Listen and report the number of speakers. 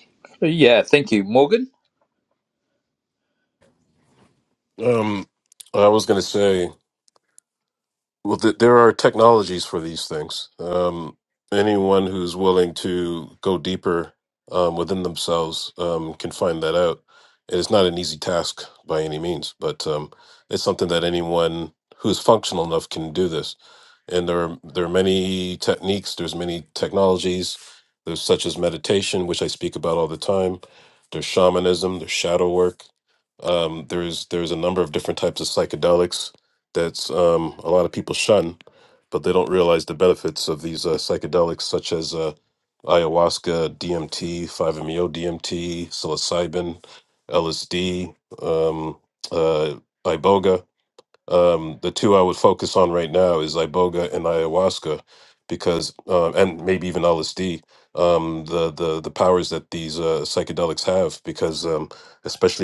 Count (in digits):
2